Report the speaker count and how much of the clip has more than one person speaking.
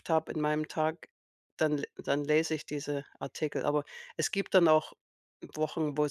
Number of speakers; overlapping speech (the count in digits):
1, no overlap